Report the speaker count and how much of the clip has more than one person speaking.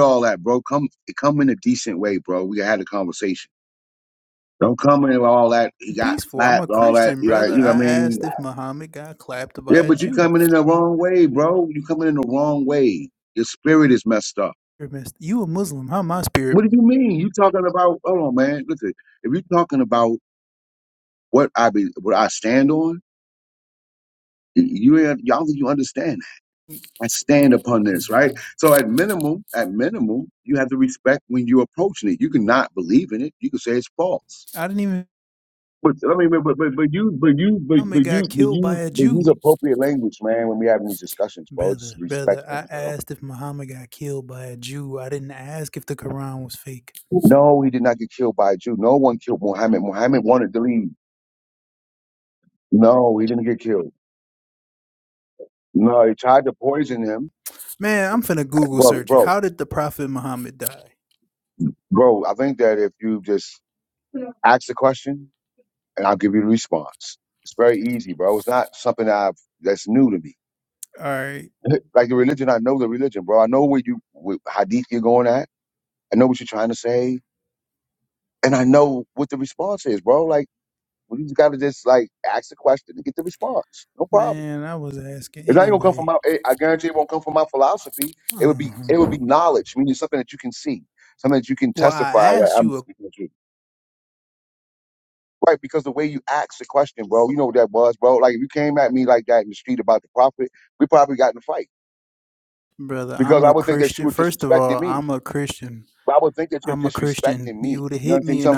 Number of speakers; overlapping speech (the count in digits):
2, about 12%